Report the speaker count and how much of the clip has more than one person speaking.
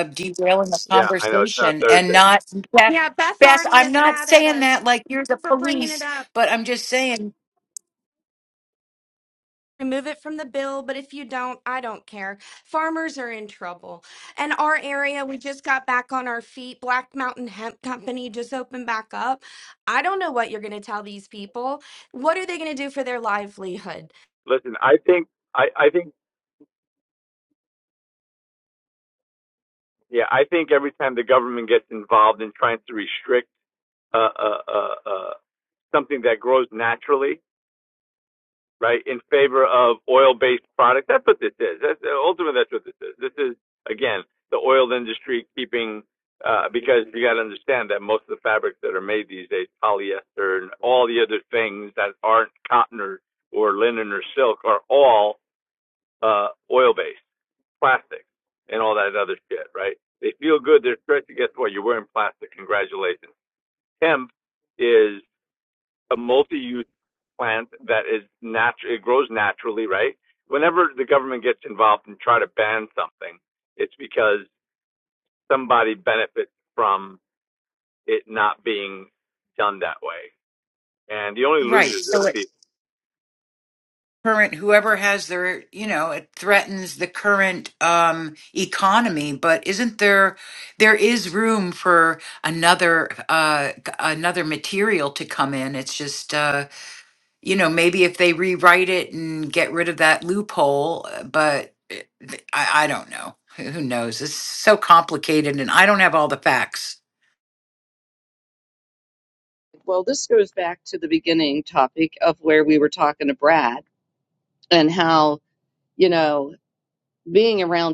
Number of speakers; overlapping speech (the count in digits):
4, about 3%